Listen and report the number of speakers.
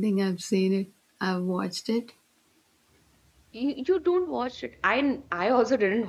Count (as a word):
two